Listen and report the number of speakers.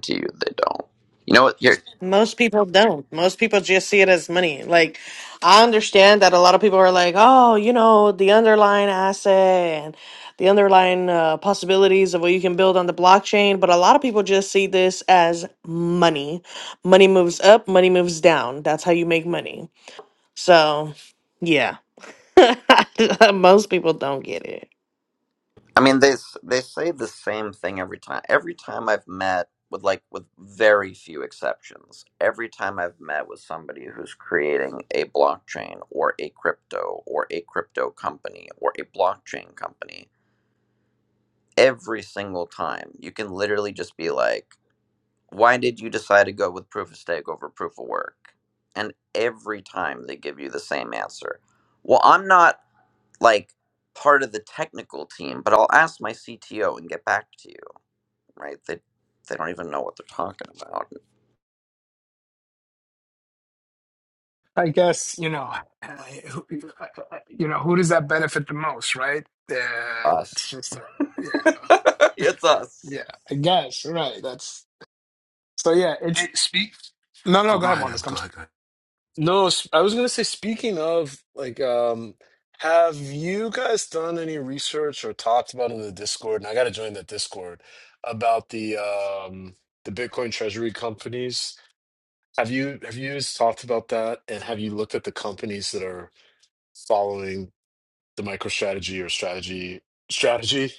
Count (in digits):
4